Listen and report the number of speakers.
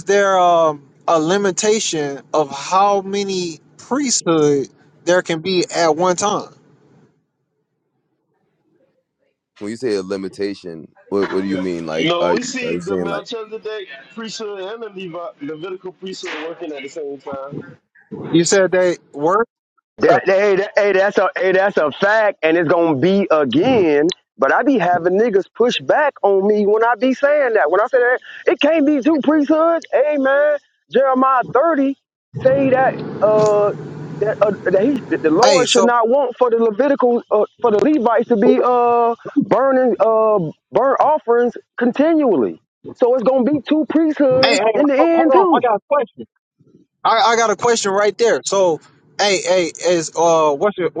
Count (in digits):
4